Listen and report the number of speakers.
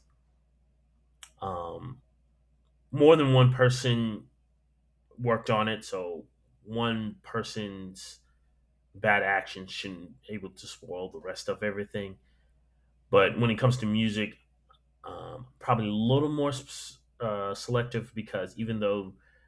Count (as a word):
one